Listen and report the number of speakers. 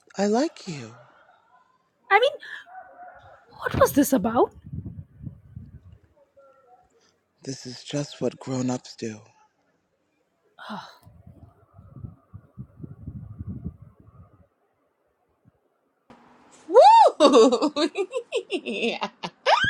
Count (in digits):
3